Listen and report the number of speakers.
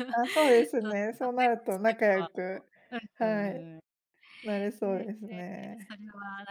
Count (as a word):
two